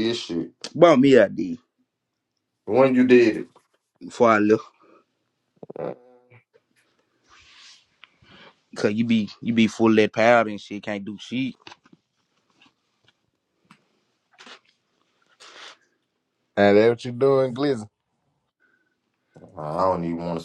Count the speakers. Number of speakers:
3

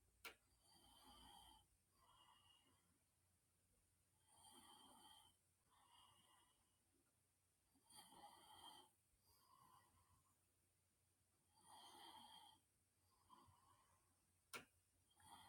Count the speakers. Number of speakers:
0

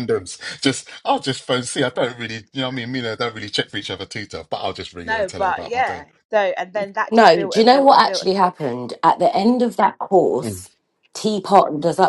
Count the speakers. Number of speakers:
3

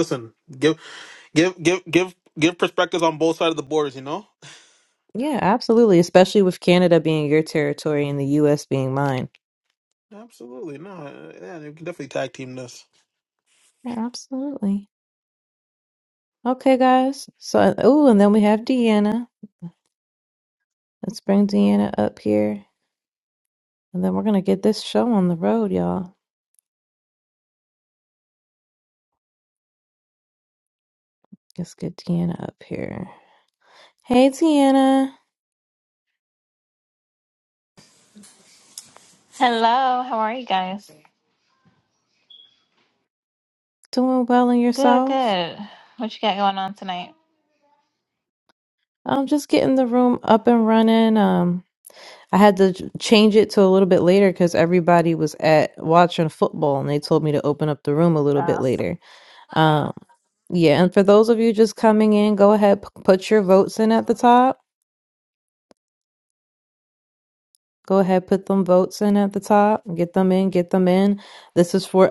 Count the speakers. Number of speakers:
3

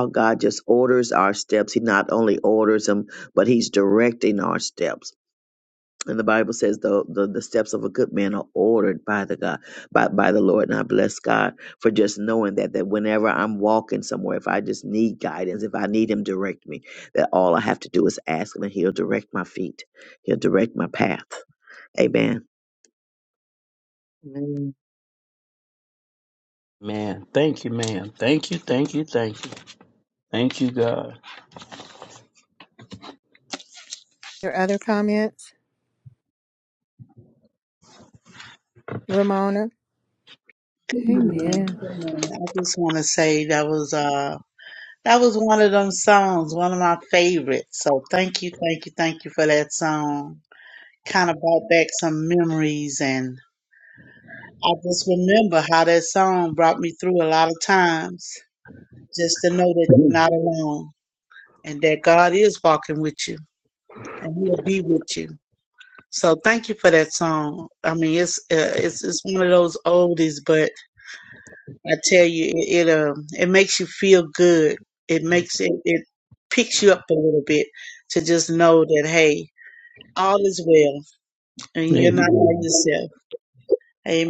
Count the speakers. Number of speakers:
4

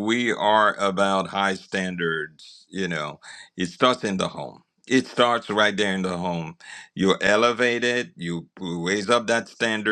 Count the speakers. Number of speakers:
1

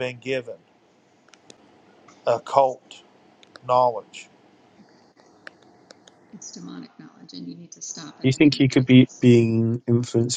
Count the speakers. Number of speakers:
3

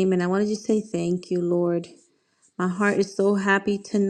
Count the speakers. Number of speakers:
1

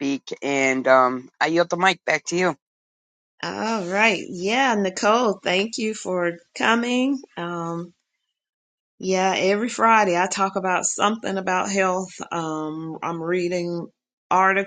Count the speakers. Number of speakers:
2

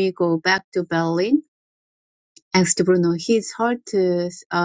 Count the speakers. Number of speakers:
1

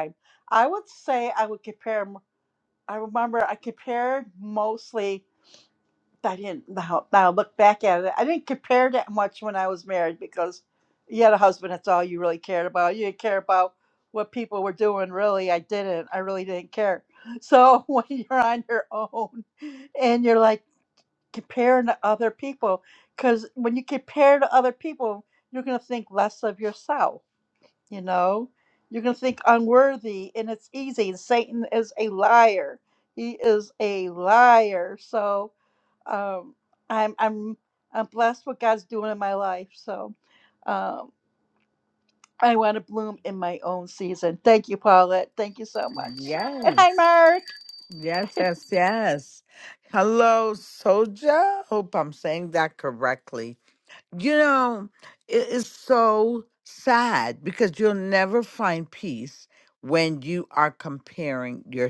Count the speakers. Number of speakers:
2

